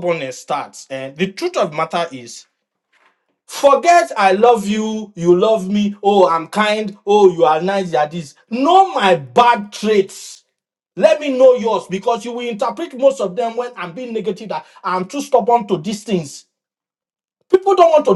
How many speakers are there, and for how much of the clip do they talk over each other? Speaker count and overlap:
1, no overlap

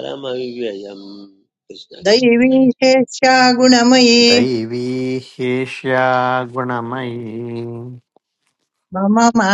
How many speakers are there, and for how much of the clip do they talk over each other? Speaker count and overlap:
3, about 3%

